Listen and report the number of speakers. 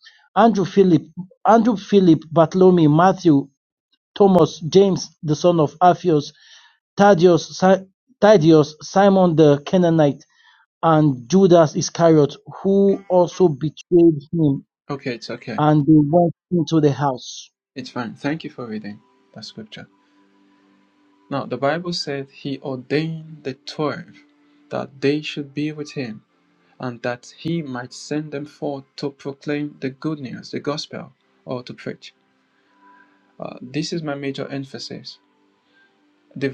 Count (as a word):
two